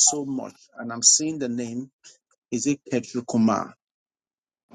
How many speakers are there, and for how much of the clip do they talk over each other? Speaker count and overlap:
1, no overlap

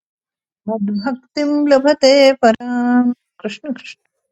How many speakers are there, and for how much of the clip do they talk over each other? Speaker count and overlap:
1, no overlap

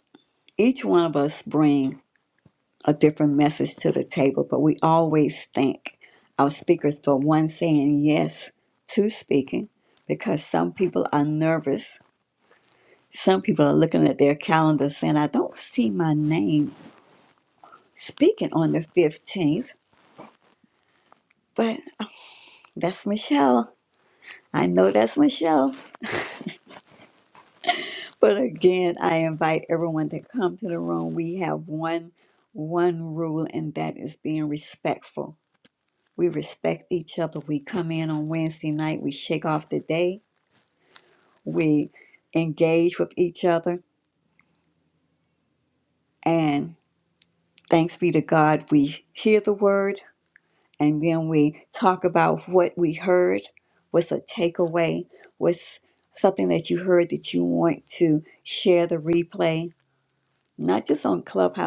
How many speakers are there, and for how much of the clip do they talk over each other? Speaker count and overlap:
1, no overlap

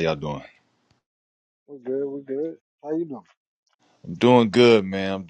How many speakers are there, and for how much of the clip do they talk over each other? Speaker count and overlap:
2, no overlap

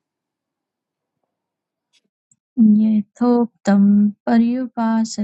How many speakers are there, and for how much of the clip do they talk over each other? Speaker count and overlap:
1, no overlap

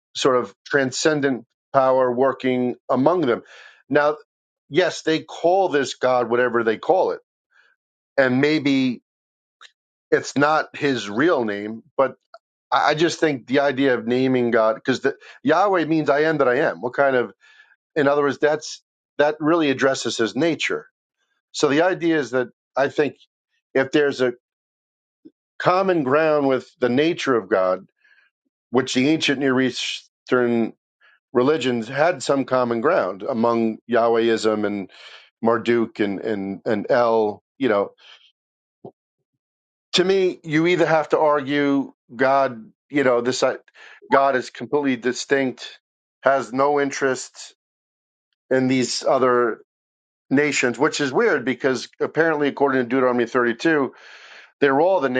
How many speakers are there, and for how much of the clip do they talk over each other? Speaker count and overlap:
1, no overlap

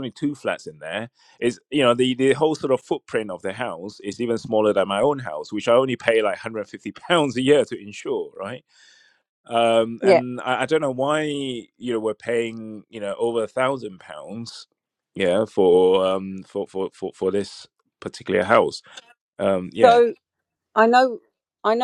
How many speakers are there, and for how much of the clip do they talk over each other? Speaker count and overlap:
2, about 2%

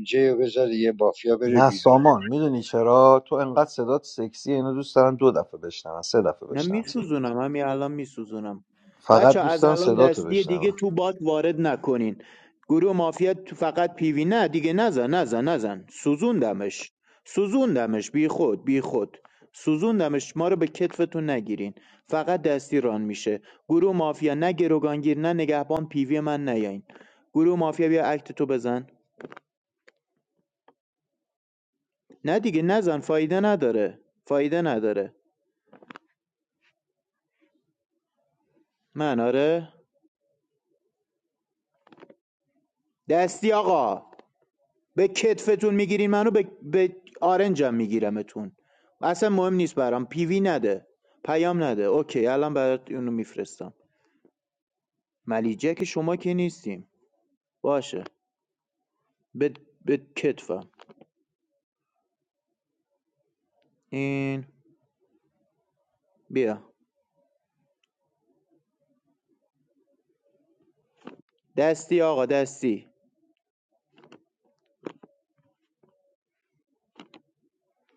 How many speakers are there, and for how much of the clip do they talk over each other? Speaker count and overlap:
3, about 3%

